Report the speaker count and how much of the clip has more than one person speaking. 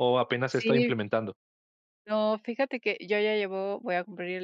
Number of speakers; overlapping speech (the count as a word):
two, about 8%